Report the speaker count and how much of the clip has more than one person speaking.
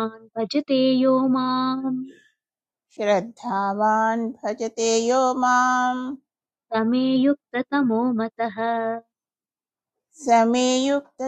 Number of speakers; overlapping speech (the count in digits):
2, no overlap